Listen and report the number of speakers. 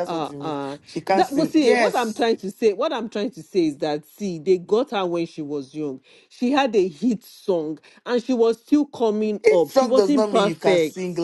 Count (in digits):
2